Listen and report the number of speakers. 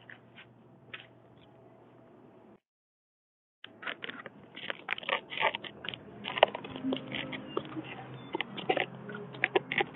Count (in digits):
0